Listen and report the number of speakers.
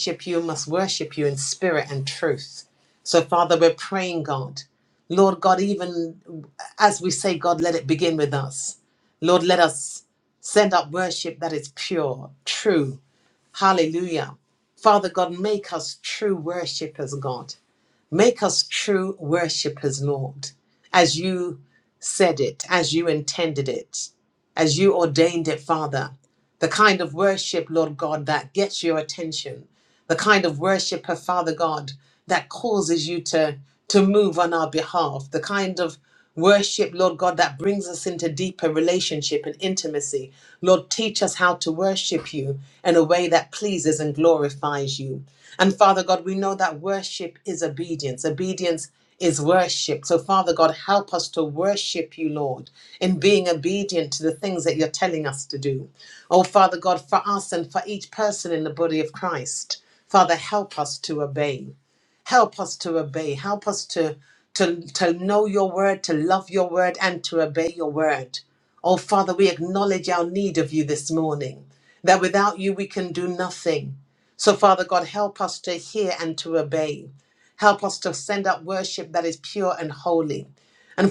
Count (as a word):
one